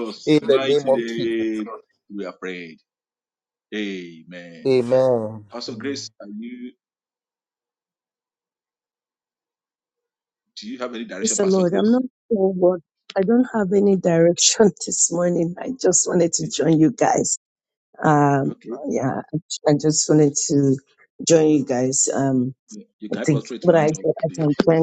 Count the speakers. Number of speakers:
3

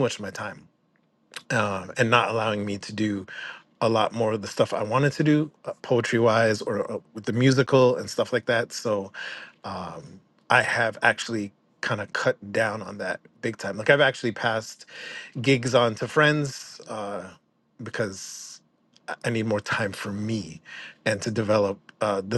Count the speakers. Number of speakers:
1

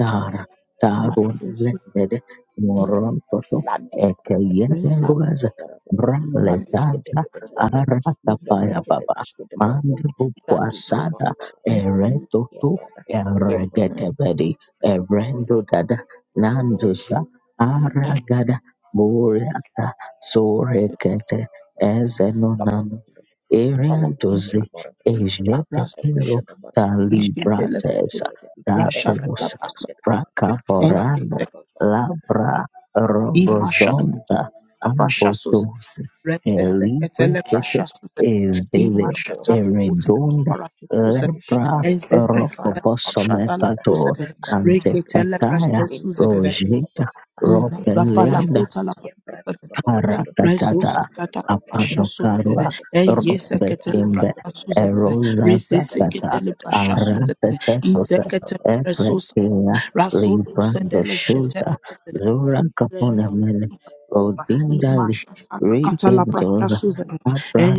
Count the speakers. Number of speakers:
3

